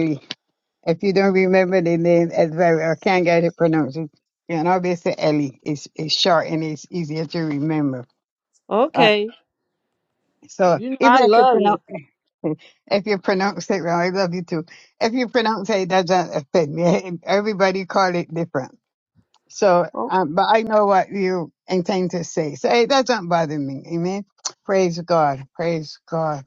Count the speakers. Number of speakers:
2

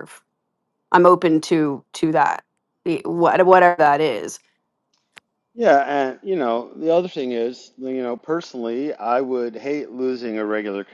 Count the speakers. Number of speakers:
2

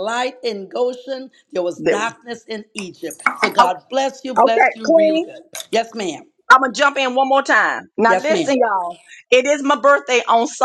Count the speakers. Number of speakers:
2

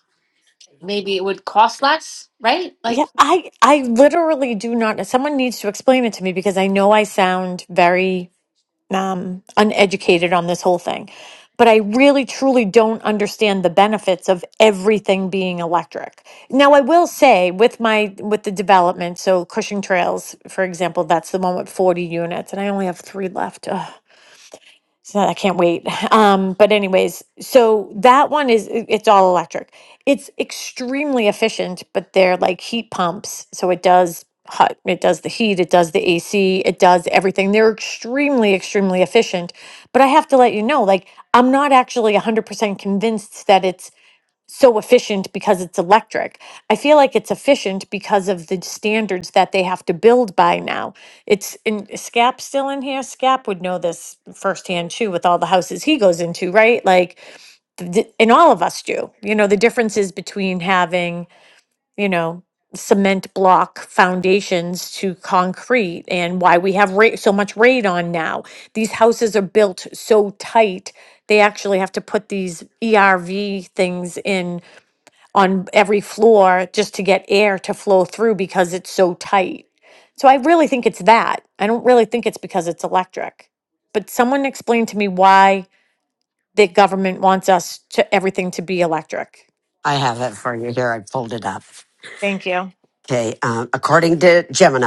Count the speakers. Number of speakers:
3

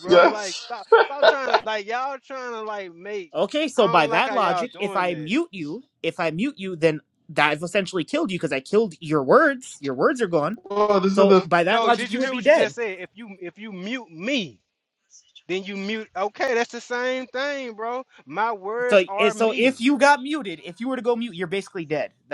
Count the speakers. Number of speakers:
3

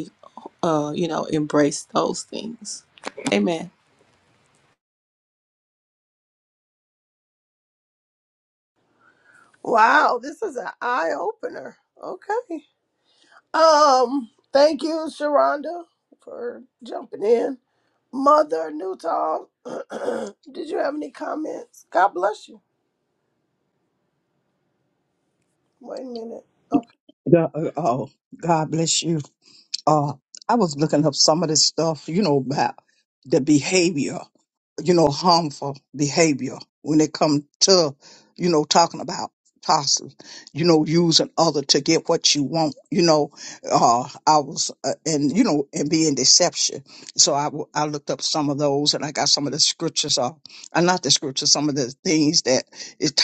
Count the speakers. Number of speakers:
3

